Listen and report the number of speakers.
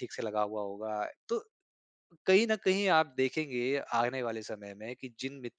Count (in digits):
1